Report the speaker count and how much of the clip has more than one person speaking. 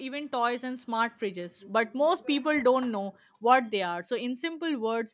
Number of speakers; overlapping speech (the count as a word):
one, no overlap